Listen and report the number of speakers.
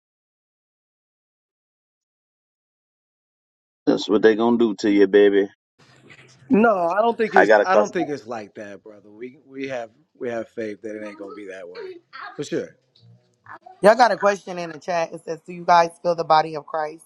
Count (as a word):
three